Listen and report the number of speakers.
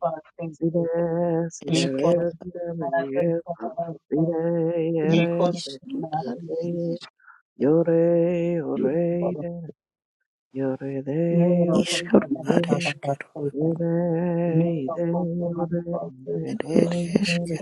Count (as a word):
three